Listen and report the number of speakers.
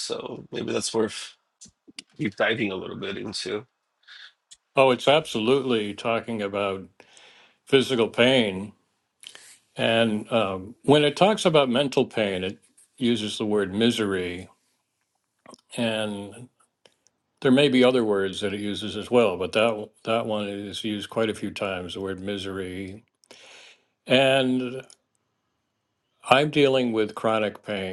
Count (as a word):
two